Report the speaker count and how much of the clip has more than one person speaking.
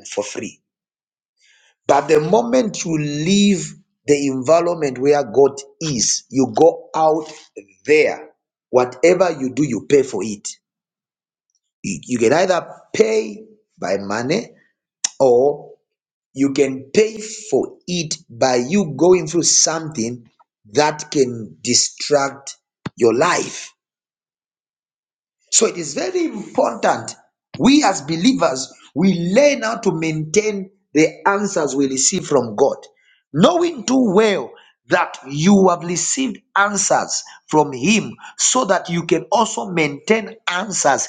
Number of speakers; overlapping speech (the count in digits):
1, no overlap